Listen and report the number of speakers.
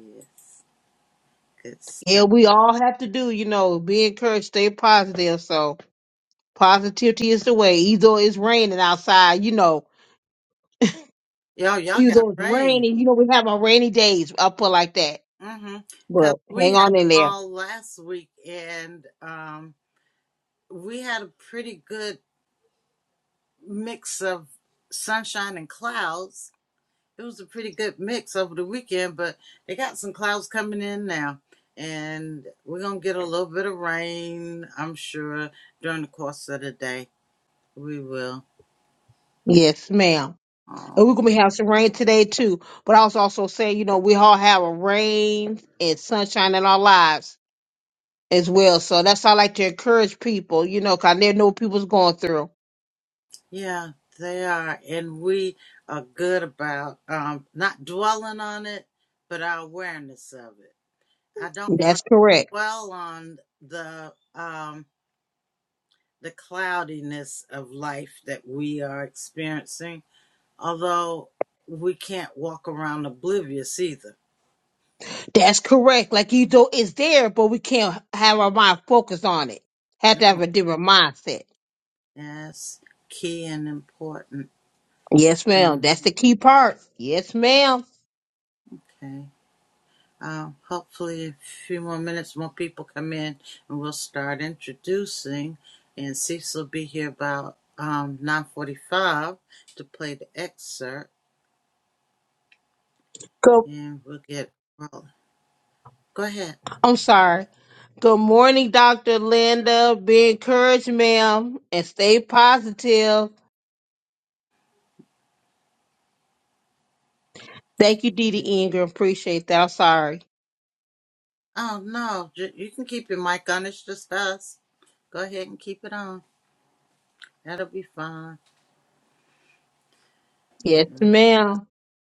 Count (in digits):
2